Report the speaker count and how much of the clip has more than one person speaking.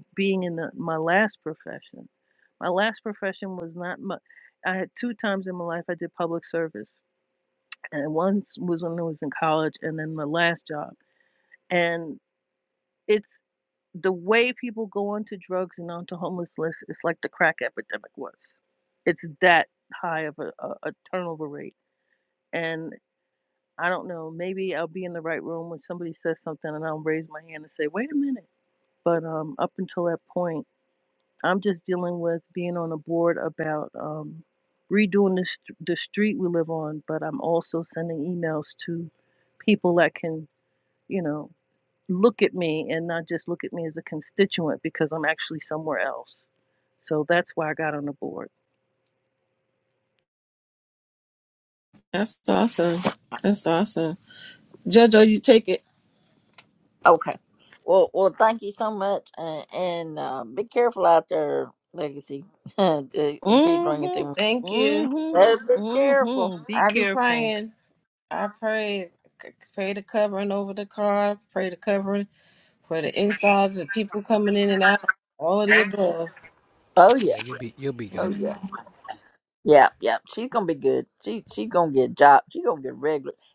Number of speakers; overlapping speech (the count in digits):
4, about 4%